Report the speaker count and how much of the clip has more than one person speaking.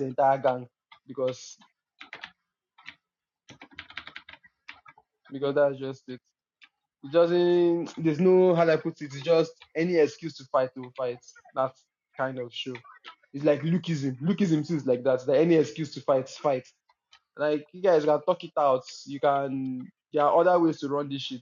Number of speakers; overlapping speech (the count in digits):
1, no overlap